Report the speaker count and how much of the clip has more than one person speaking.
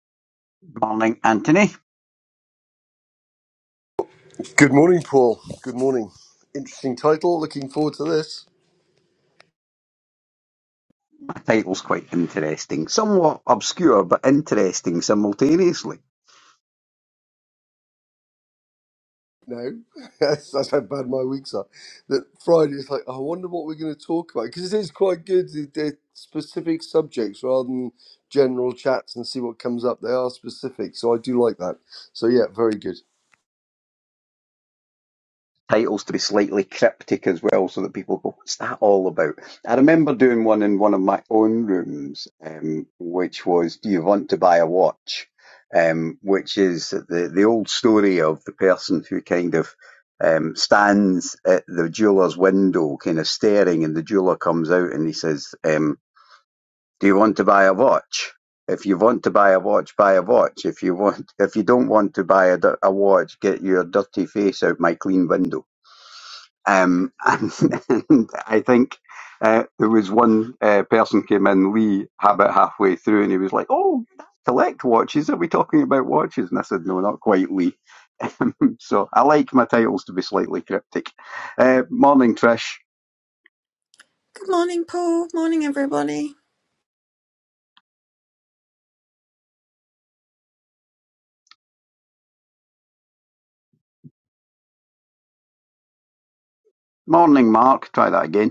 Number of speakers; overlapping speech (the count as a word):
three, no overlap